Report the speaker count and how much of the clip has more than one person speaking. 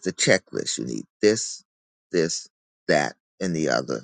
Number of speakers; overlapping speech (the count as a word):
one, no overlap